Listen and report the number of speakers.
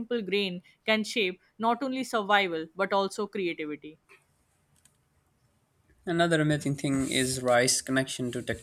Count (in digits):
2